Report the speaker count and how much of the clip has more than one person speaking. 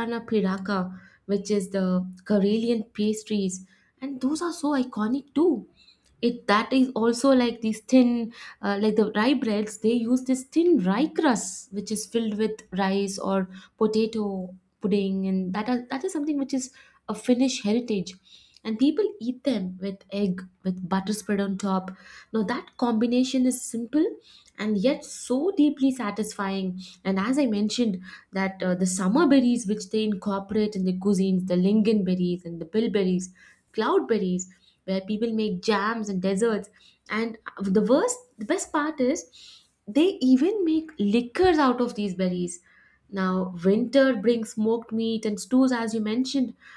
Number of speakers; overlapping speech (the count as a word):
one, no overlap